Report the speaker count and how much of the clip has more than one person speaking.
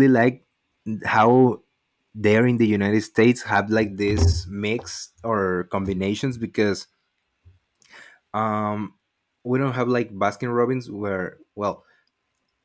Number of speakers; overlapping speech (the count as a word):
one, no overlap